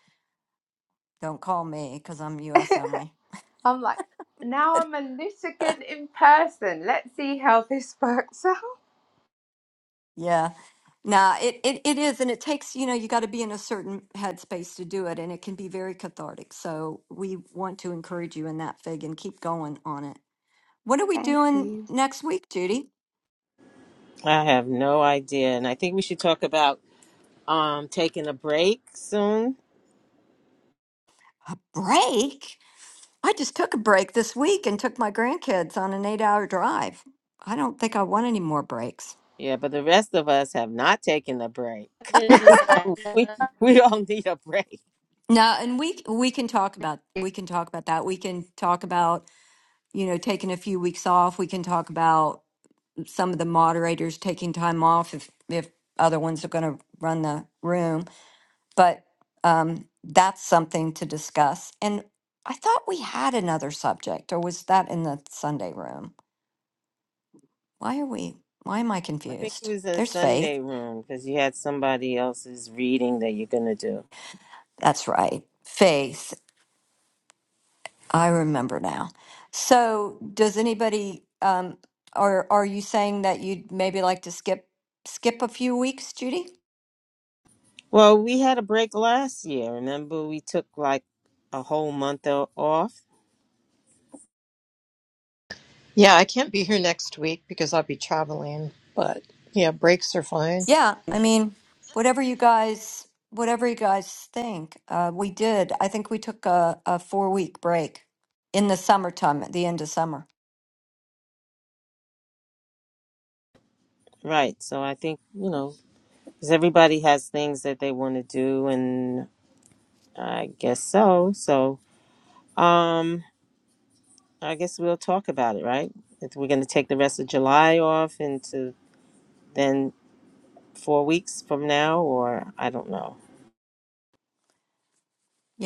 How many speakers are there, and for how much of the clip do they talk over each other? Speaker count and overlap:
4, about 1%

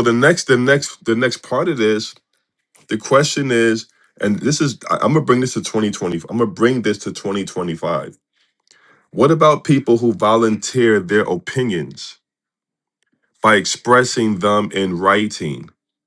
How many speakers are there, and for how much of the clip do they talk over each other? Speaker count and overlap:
1, no overlap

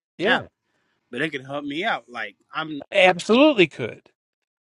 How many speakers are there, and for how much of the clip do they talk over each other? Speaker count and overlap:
2, about 4%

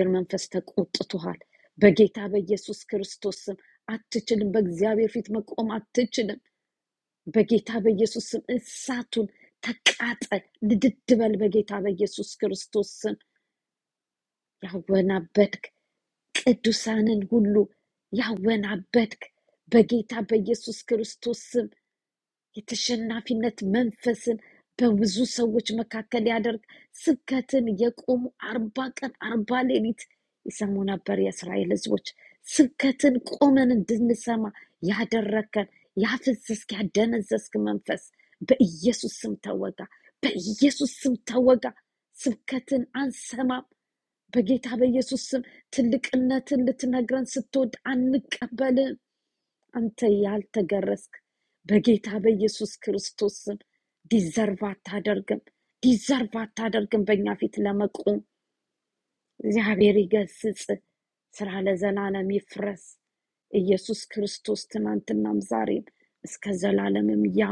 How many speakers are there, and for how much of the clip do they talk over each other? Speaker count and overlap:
1, no overlap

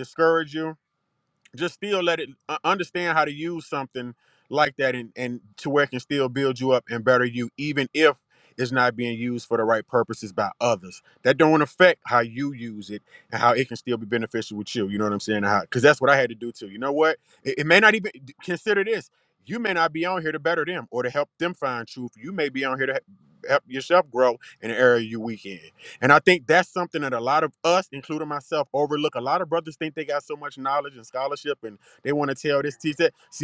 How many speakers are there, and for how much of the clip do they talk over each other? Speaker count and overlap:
1, no overlap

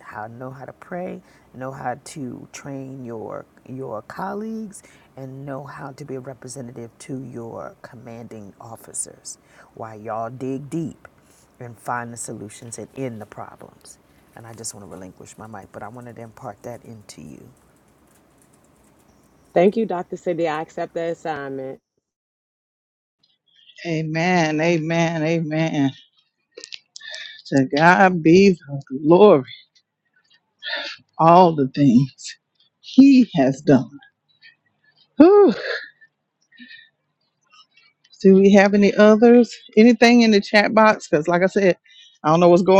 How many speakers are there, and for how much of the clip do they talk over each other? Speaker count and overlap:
3, no overlap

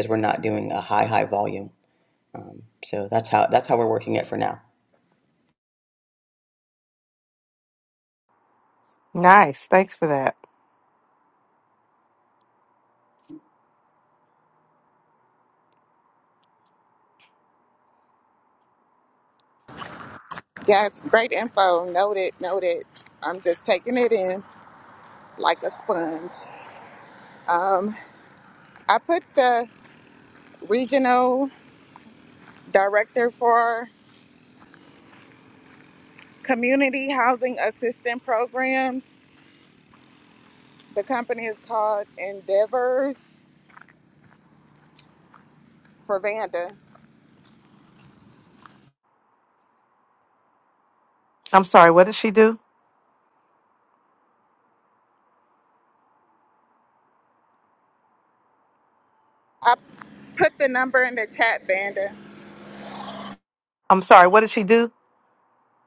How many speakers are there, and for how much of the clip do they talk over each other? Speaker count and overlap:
3, no overlap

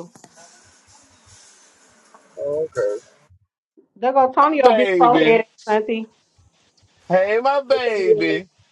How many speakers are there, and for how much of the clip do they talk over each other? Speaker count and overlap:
3, about 17%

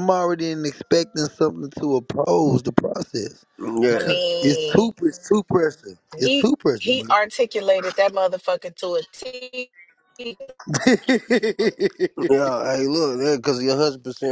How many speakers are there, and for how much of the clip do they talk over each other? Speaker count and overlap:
3, about 11%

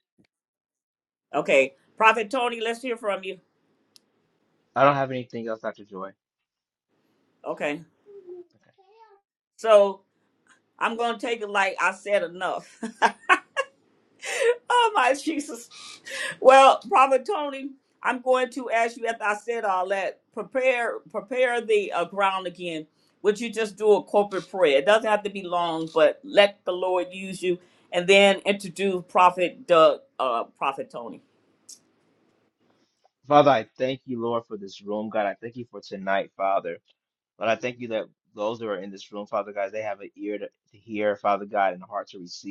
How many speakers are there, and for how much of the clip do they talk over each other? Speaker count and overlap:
2, no overlap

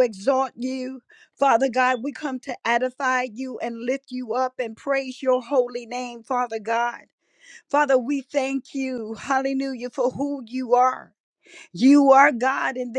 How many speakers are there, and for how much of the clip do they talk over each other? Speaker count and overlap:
1, no overlap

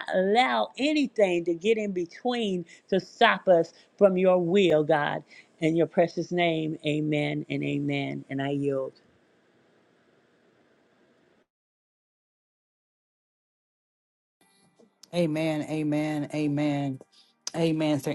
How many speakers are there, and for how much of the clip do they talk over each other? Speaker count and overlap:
2, no overlap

